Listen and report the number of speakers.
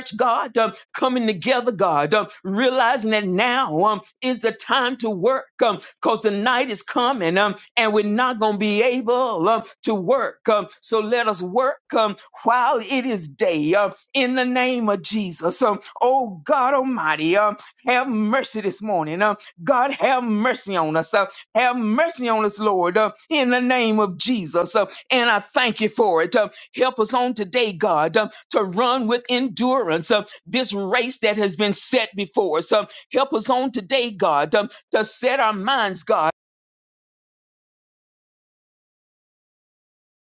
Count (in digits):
1